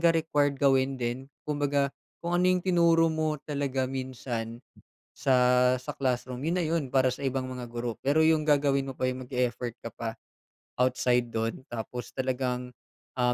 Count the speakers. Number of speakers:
1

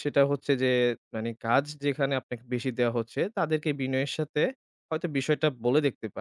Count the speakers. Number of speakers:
1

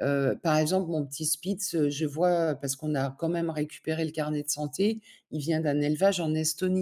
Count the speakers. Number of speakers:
1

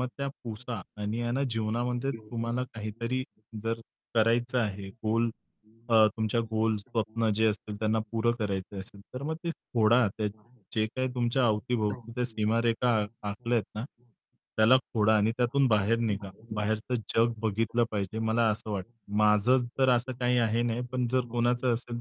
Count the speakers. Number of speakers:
1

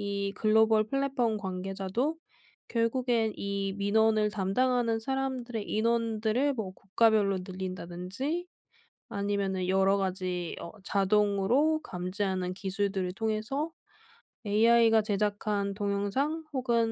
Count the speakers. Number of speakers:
1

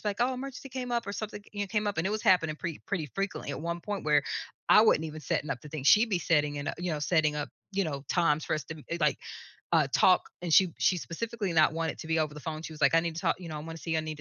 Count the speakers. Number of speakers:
1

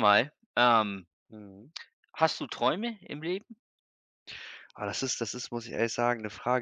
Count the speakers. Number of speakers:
2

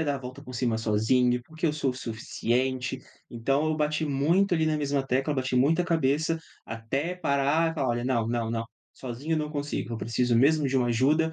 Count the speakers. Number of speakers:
1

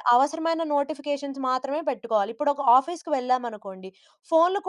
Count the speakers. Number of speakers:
1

